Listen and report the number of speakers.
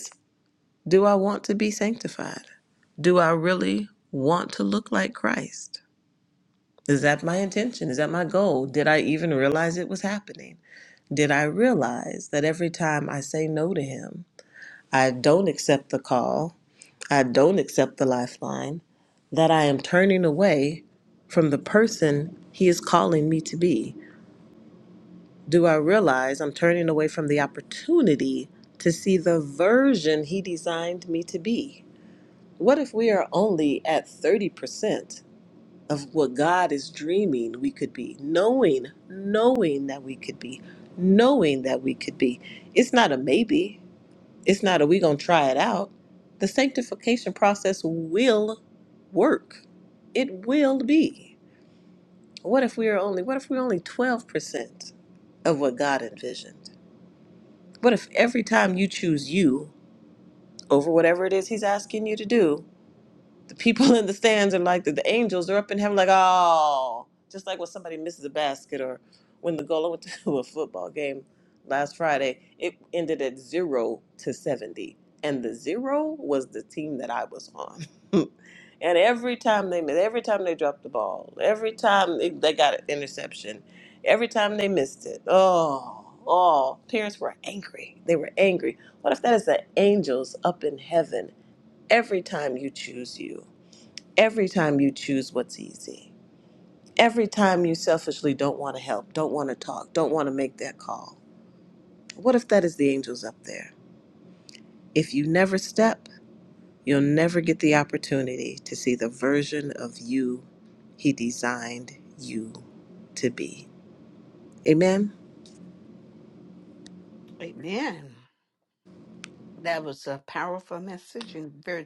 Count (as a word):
two